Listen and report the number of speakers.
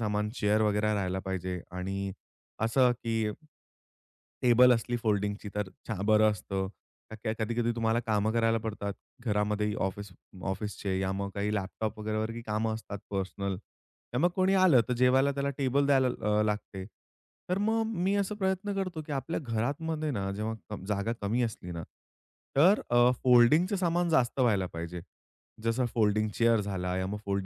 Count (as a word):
one